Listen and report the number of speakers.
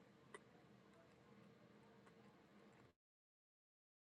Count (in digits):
0